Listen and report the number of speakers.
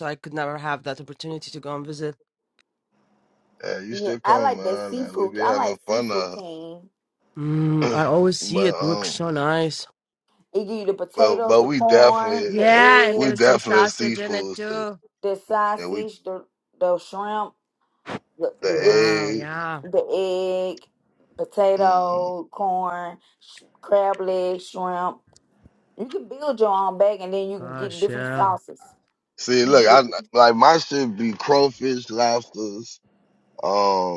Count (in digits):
3